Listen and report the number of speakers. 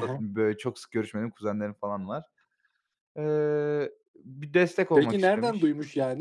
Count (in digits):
2